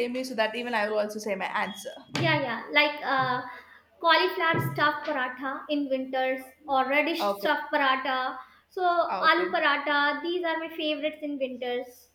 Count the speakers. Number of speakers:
two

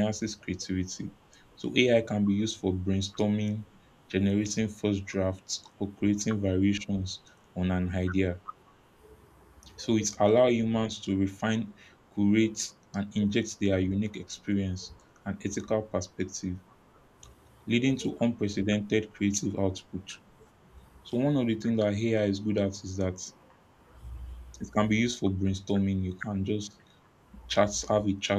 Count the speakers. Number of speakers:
one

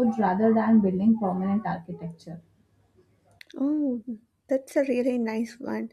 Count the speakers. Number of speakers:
two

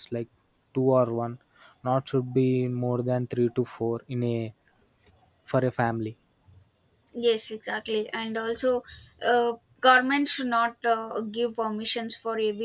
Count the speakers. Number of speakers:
two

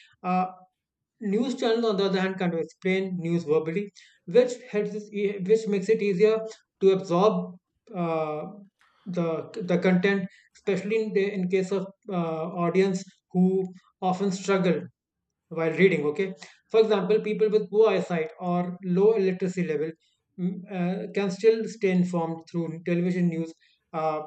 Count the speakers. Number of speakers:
one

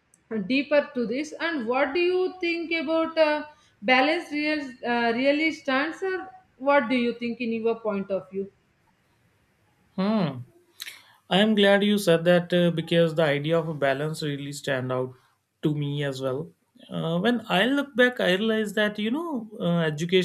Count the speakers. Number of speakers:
two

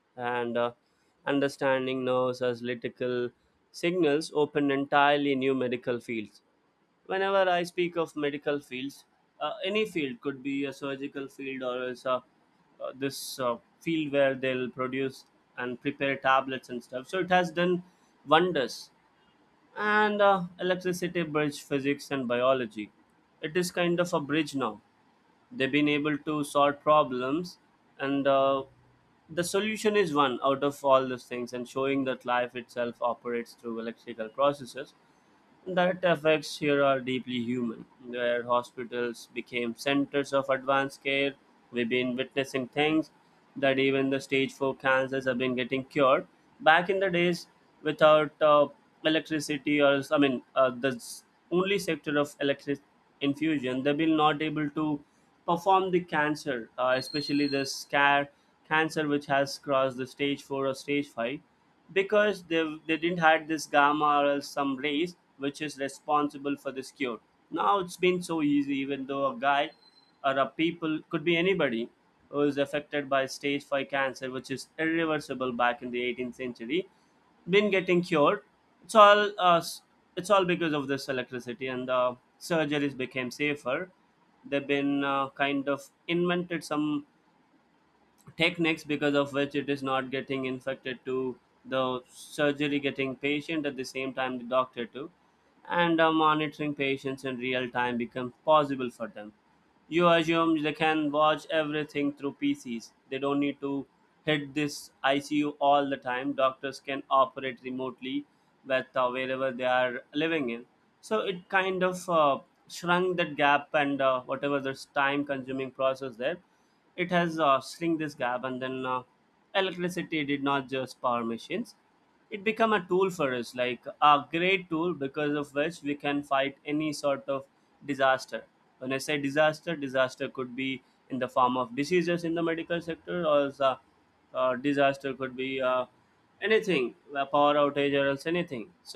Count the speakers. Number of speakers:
one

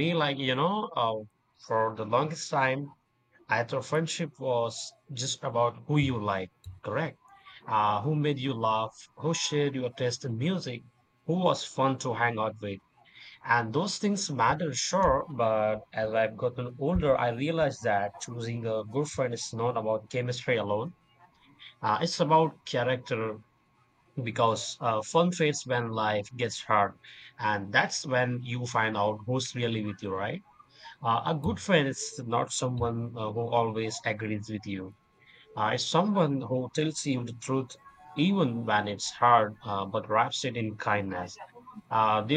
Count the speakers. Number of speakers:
one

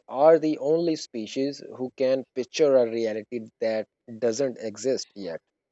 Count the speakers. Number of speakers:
one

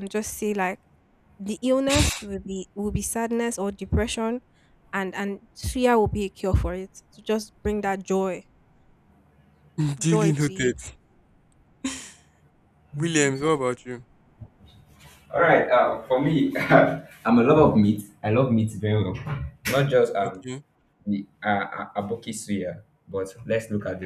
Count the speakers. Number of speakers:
three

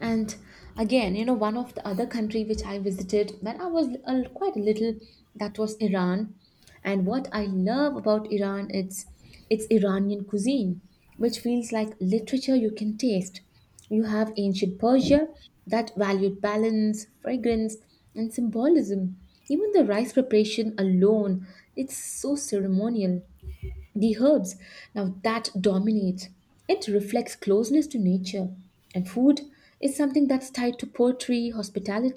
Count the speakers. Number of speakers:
one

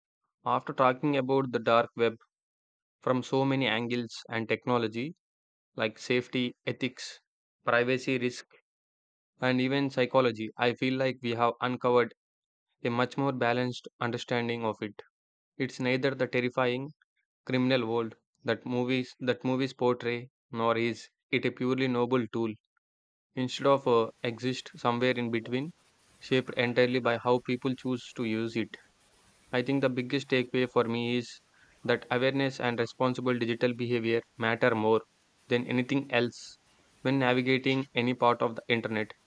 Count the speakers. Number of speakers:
one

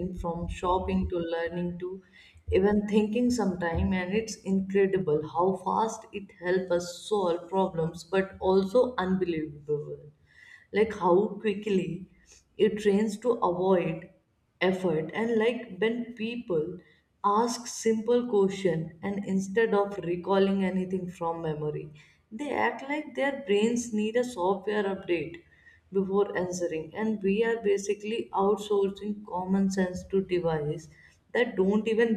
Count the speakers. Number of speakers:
one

